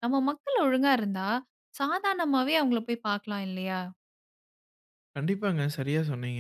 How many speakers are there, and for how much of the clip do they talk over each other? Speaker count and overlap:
2, no overlap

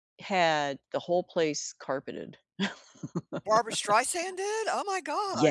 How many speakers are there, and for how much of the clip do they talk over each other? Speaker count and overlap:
2, about 3%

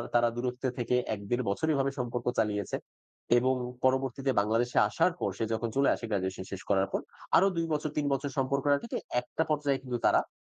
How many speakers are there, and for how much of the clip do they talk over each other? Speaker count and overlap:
1, no overlap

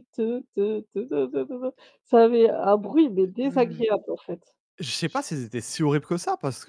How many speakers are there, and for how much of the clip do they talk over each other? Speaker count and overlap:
2, about 5%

